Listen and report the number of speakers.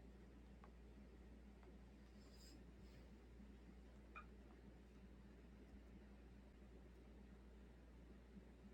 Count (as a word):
zero